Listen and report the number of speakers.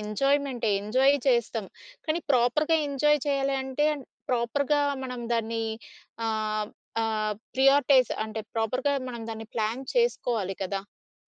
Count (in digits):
1